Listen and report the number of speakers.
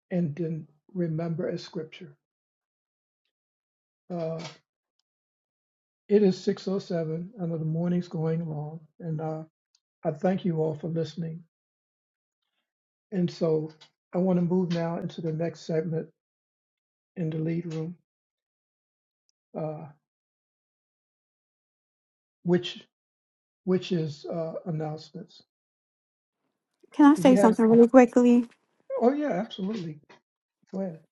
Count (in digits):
2